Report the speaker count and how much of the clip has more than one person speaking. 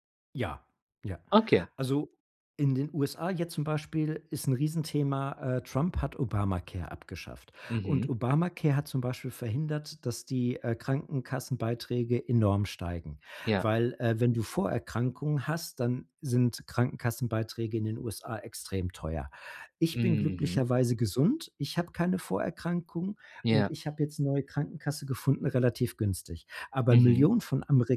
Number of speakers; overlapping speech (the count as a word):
two, about 6%